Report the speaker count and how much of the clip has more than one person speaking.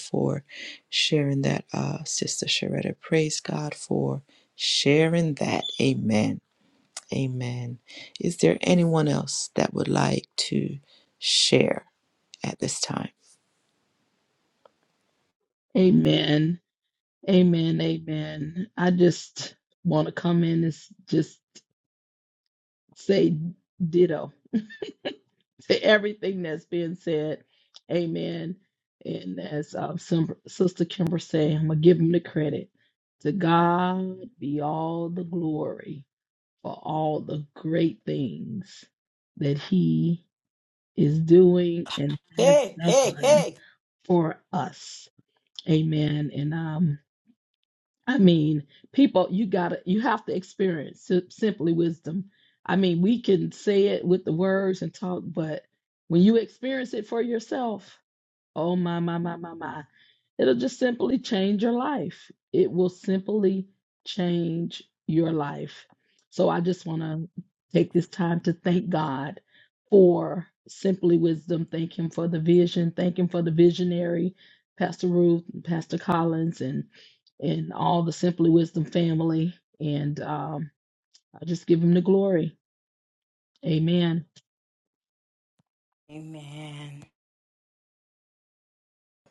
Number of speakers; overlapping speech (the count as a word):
three, about 1%